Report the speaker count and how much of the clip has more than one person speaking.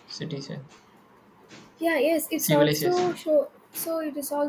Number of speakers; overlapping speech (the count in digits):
2, about 16%